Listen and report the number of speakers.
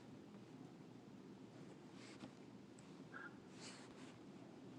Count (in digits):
0